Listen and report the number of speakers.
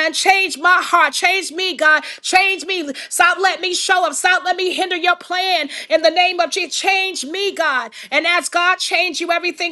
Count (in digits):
1